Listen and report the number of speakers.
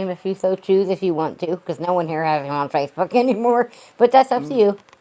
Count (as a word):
one